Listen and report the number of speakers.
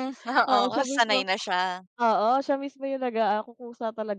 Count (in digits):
2